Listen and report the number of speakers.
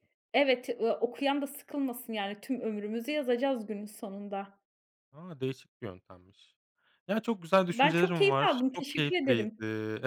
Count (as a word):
two